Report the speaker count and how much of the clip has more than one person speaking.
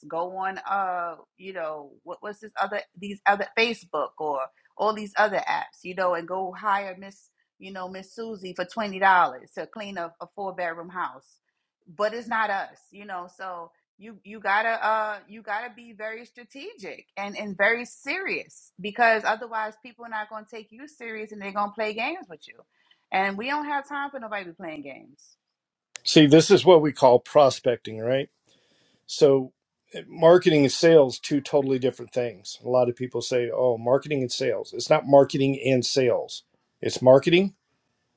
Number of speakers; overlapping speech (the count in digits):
2, no overlap